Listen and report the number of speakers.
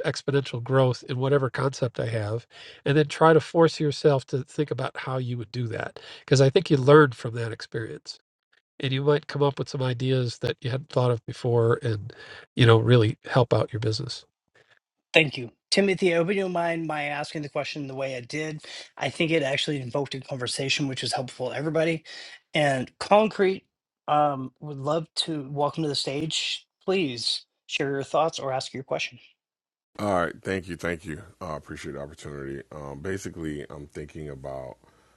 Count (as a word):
three